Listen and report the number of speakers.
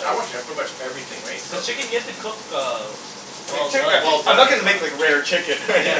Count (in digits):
3